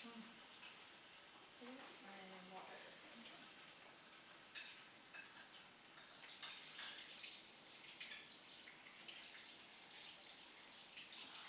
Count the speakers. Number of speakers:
one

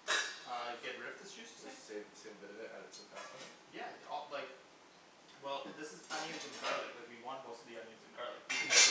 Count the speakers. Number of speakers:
two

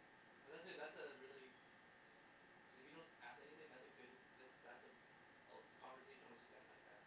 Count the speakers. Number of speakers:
one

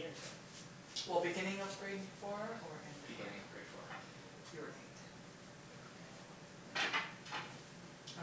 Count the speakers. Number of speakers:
two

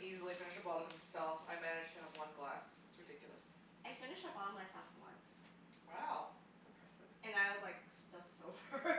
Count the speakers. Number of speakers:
two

